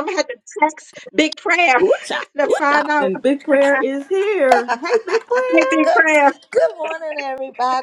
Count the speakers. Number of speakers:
three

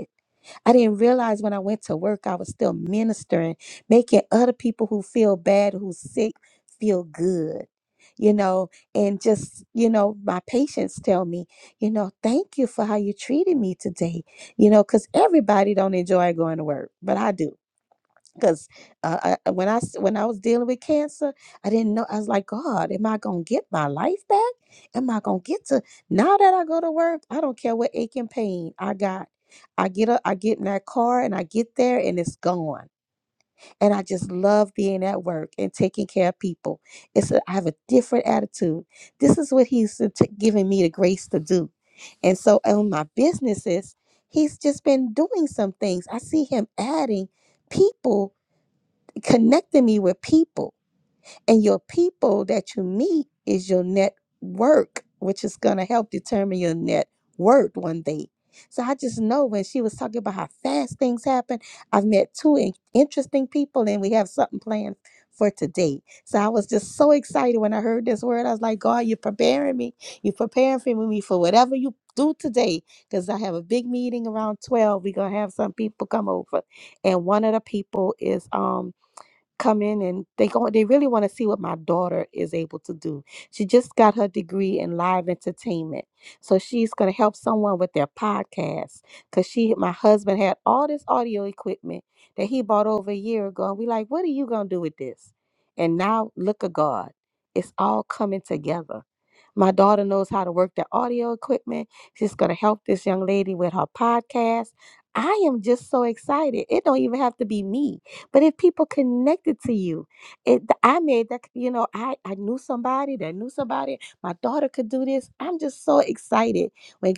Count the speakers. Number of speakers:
one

